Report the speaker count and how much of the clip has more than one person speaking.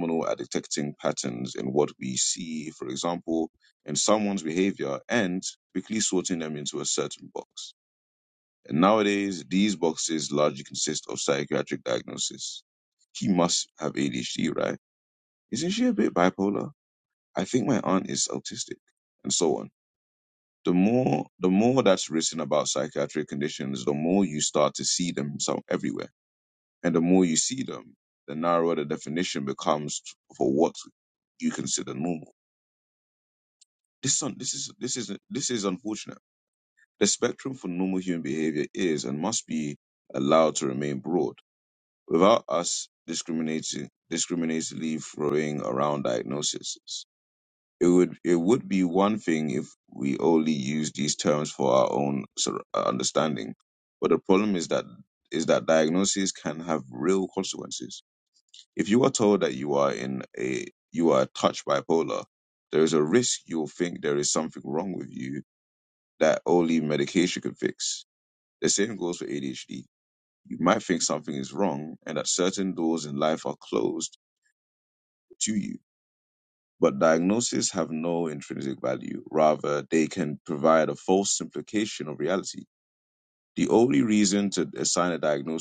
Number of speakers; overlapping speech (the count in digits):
1, no overlap